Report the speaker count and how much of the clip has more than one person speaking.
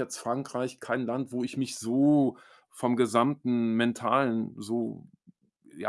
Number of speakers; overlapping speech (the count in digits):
1, no overlap